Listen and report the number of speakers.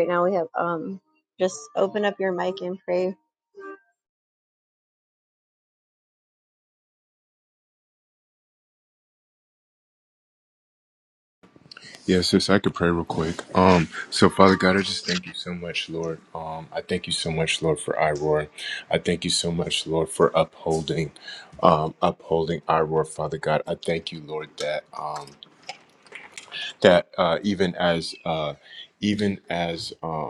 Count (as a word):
two